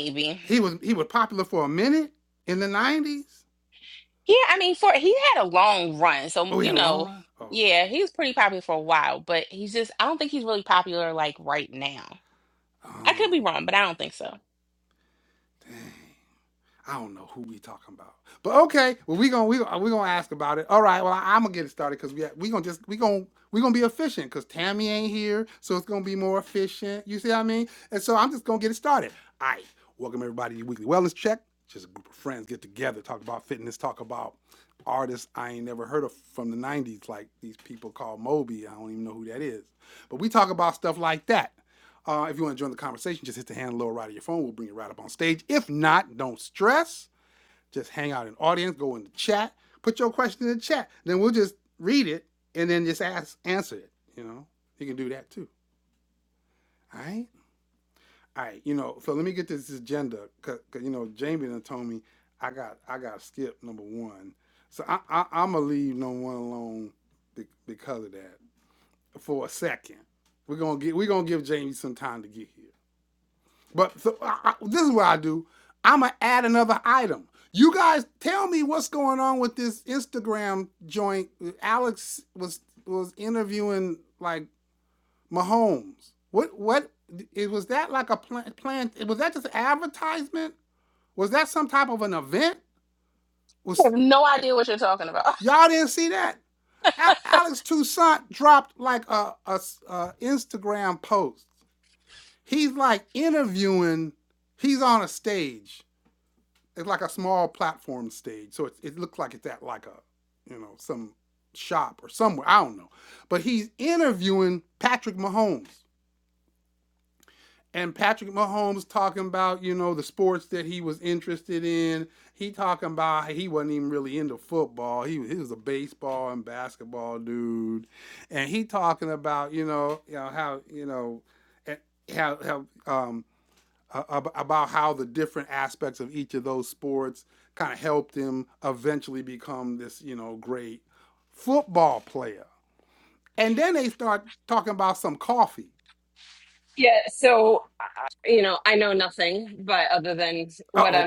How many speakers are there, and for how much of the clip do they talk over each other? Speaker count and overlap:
three, about 1%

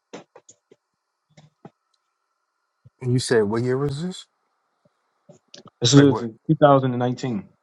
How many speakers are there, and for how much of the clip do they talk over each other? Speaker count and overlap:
two, about 4%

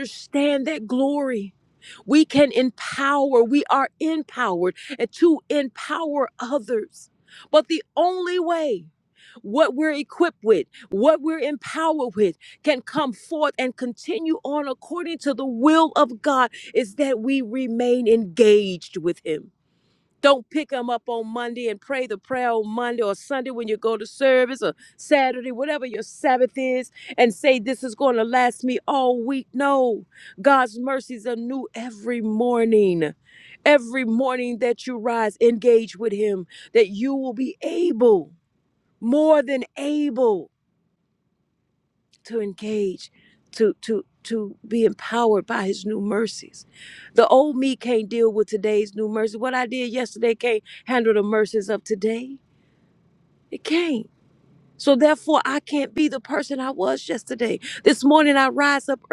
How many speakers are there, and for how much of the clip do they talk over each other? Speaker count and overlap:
one, no overlap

